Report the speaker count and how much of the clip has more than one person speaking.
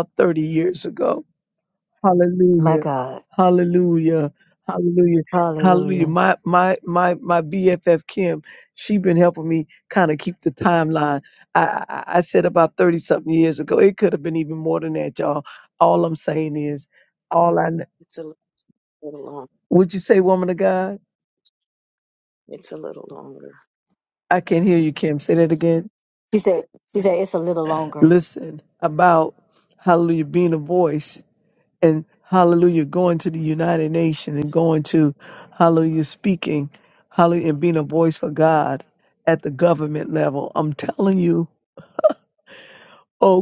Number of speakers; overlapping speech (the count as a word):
three, about 2%